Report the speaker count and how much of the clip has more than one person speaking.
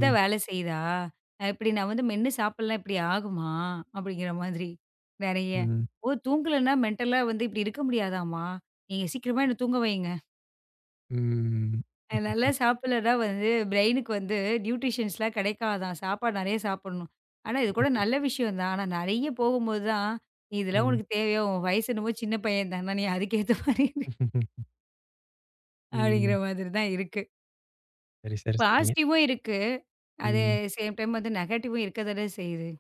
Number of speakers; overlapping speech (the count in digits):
2, about 5%